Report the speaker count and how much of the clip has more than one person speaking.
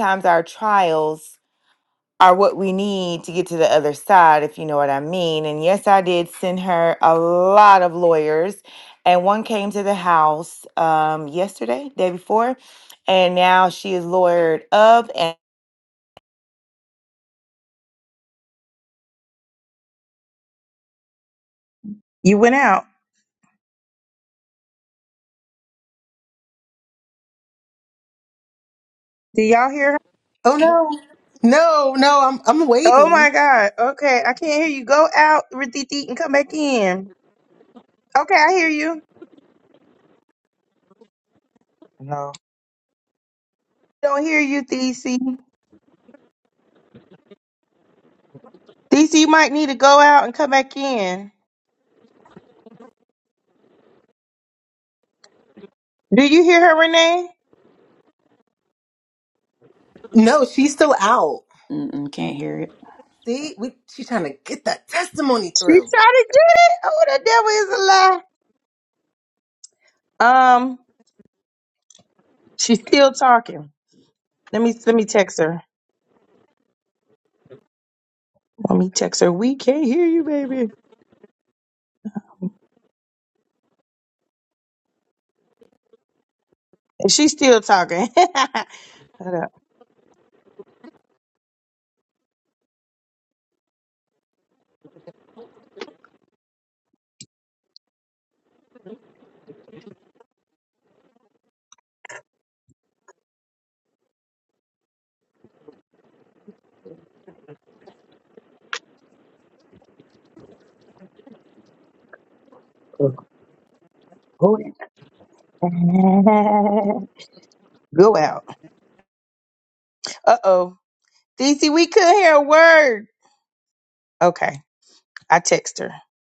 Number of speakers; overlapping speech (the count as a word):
four, about 1%